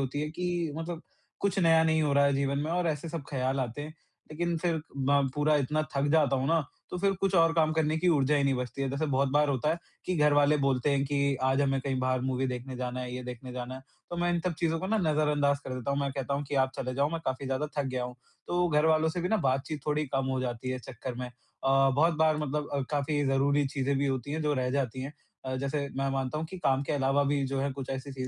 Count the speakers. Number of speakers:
one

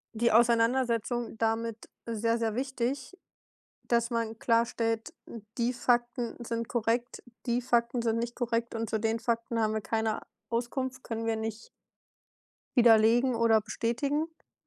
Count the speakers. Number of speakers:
one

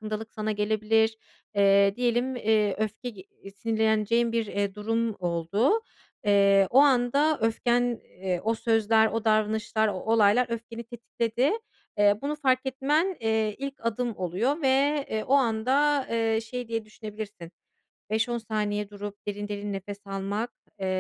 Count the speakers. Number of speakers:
one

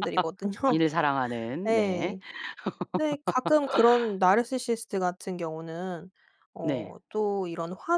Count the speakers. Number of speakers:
two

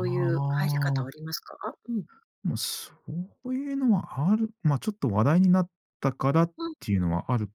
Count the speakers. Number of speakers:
two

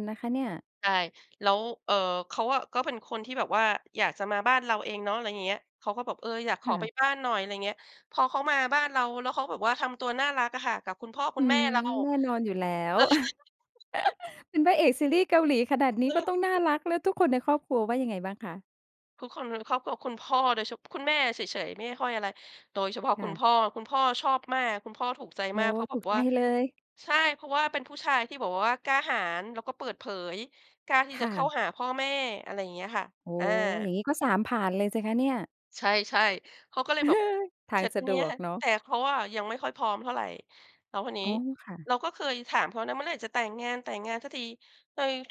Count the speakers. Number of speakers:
two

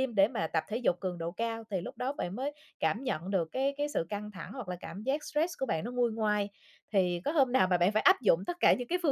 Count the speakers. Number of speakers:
one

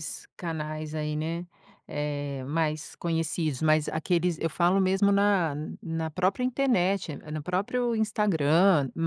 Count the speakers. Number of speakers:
one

